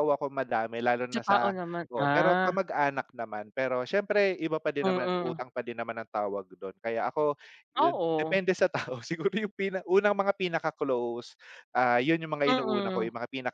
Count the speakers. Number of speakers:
2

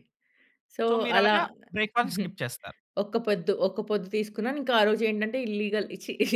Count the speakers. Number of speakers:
2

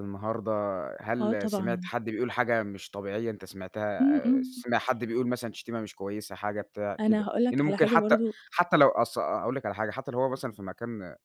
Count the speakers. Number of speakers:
2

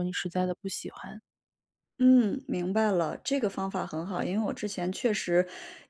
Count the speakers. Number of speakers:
2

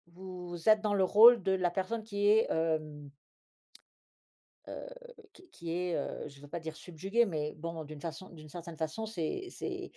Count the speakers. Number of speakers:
1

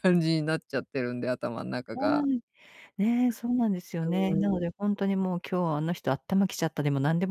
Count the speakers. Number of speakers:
2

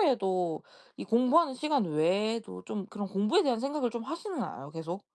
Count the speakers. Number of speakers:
1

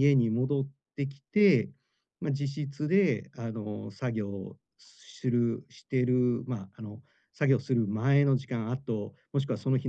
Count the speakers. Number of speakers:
1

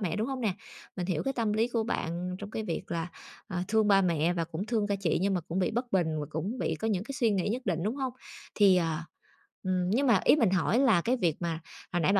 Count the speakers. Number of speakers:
1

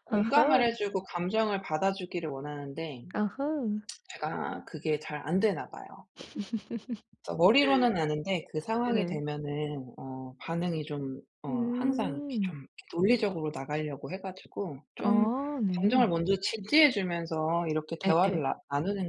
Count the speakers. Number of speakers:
2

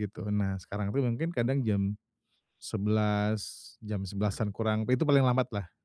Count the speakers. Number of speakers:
1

